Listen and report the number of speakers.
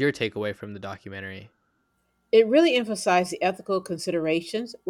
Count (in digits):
2